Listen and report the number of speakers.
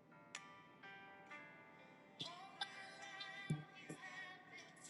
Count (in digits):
0